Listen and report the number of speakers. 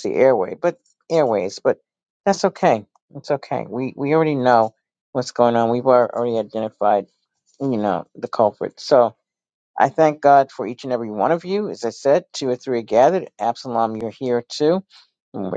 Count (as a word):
one